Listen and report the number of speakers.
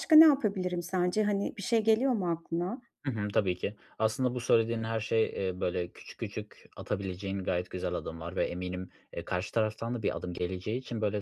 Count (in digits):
2